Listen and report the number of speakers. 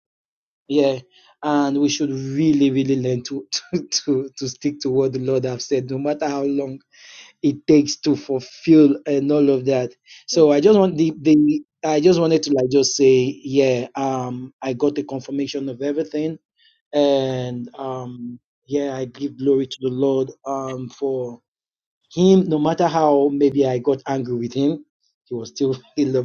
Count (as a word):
one